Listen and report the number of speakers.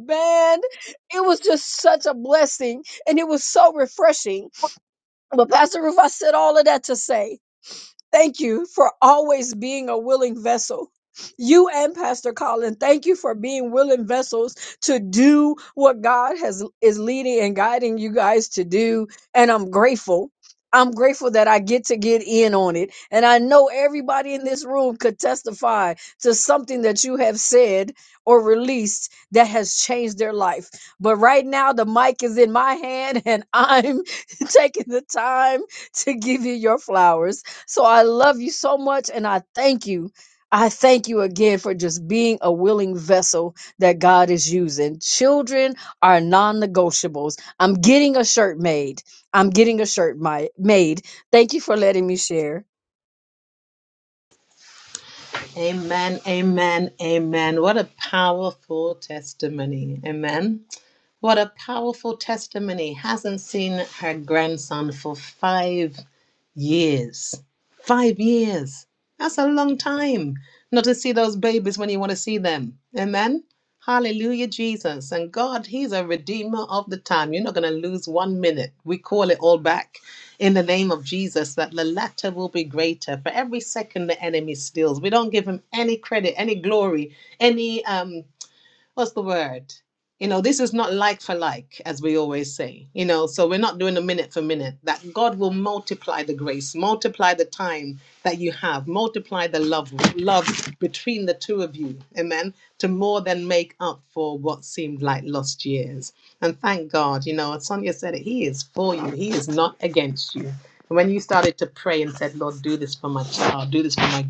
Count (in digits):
2